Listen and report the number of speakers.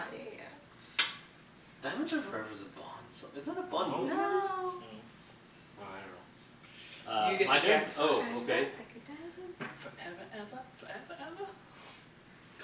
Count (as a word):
three